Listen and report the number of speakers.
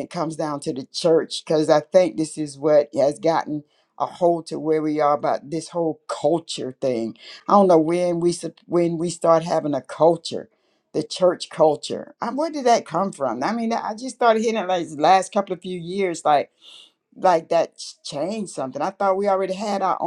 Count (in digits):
1